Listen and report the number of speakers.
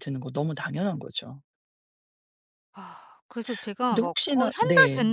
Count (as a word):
two